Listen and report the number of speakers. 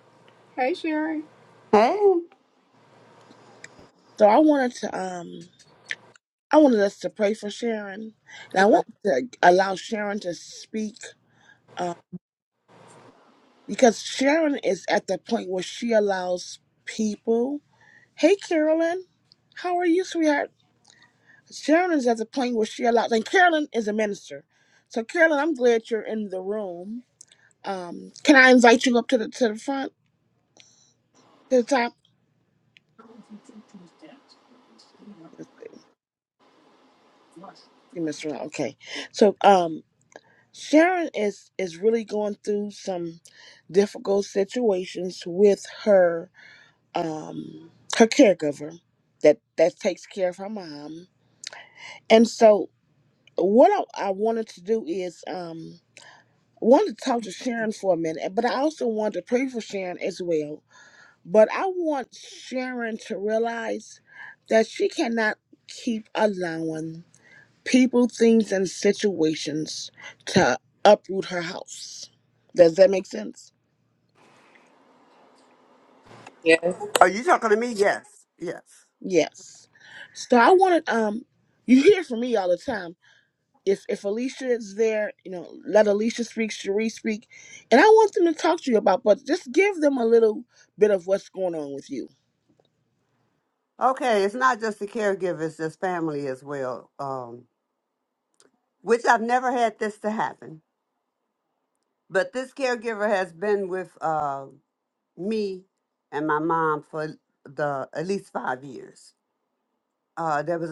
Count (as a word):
three